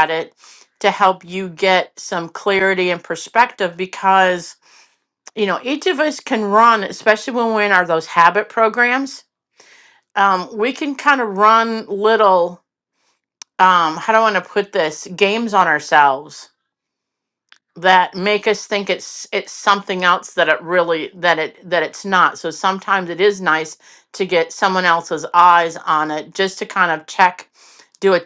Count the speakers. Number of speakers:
1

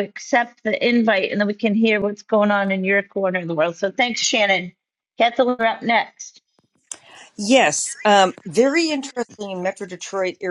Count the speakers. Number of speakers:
2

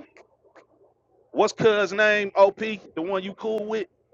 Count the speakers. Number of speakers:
1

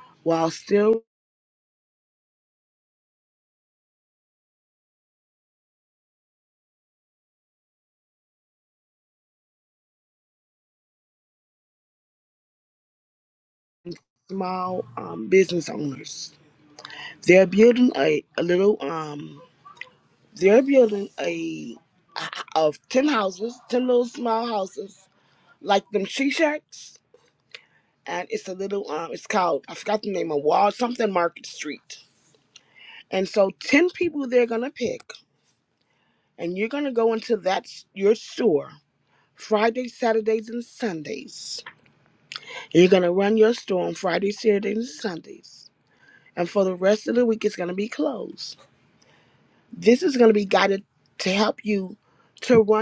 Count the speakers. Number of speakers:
1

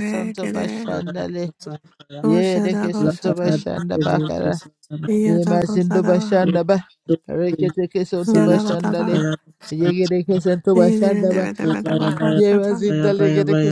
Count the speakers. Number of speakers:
3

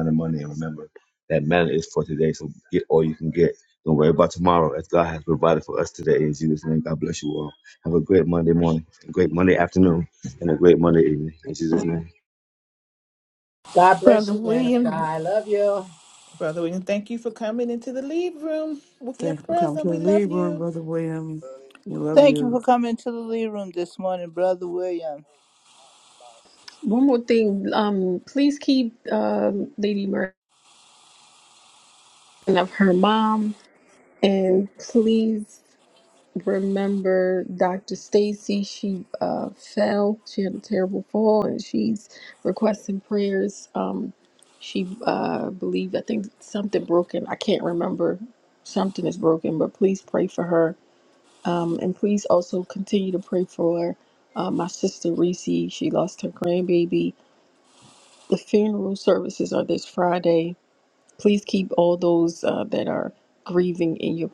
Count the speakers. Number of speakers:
6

